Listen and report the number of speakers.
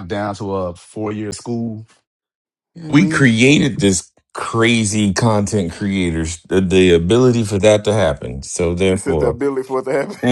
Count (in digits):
3